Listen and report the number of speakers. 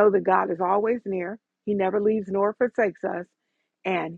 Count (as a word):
one